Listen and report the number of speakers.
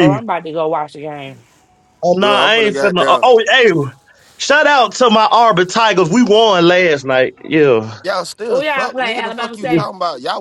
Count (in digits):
3